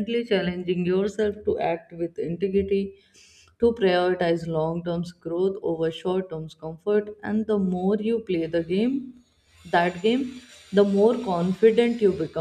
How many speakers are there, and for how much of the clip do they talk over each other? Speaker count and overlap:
1, no overlap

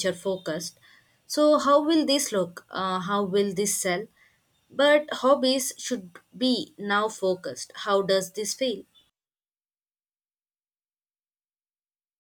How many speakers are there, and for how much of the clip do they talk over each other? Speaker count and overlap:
1, no overlap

